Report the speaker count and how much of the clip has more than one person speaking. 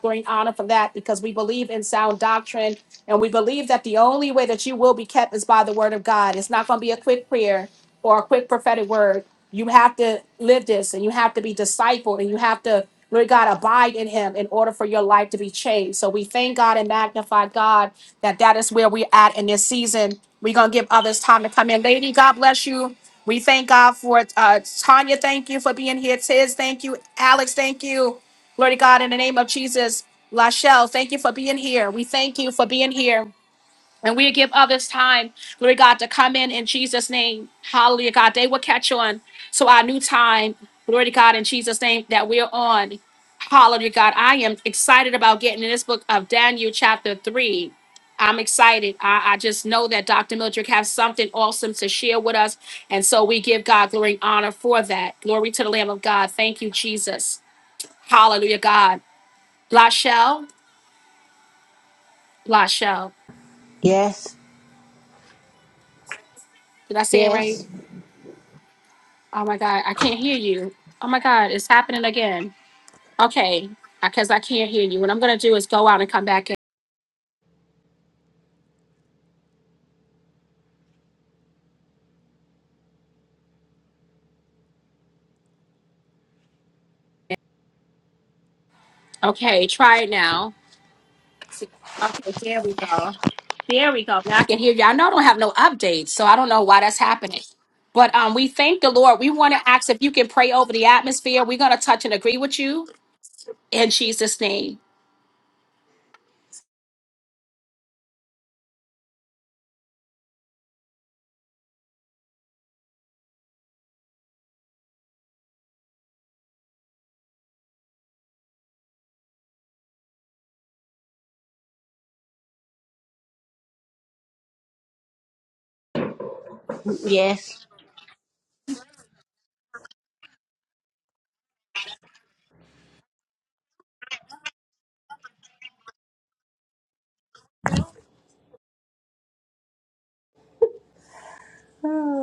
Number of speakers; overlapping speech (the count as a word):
two, under 1%